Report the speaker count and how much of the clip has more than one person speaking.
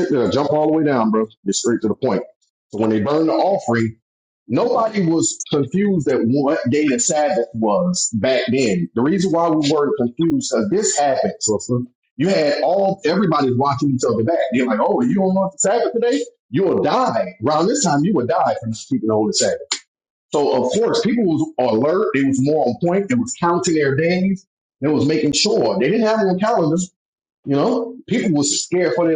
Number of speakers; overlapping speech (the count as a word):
one, no overlap